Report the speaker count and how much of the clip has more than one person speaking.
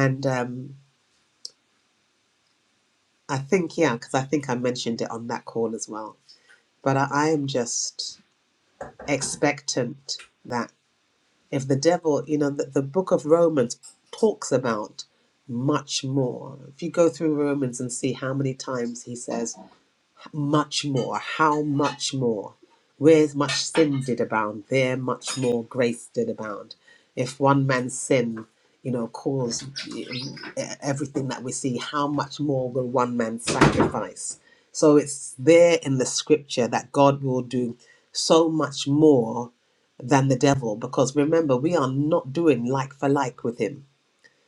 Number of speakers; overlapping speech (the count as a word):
one, no overlap